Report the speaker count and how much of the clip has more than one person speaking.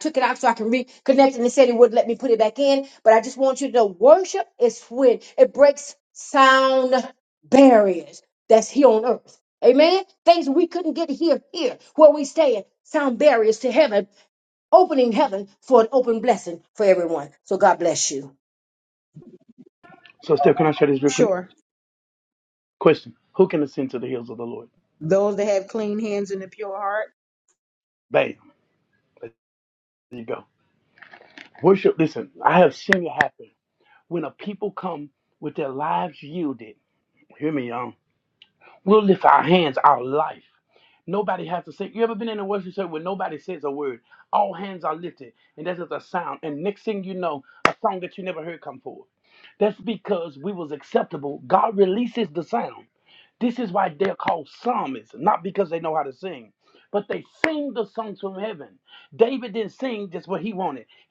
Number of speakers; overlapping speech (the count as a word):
three, under 1%